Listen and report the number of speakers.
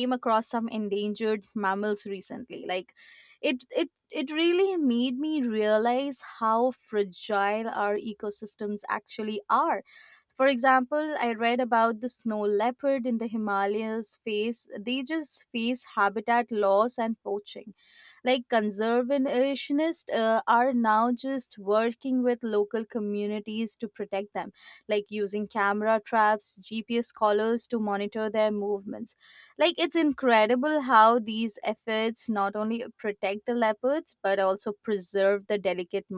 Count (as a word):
one